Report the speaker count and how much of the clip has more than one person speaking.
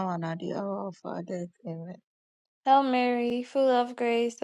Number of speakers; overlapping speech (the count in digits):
2, no overlap